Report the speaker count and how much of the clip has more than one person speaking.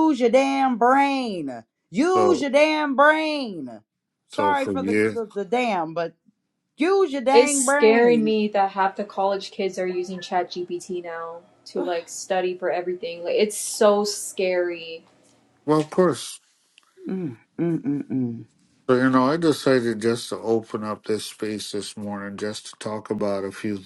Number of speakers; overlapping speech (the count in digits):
3, about 9%